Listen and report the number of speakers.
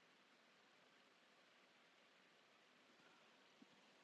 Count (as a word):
zero